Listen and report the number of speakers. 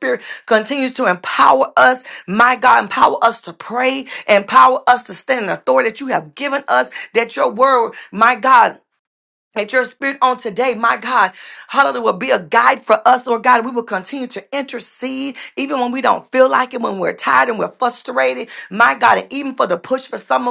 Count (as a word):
one